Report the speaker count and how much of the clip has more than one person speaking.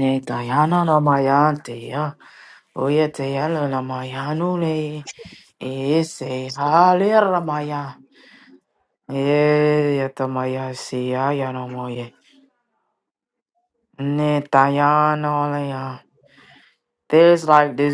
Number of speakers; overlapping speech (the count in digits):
1, no overlap